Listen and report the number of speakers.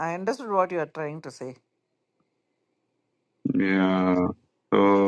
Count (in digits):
2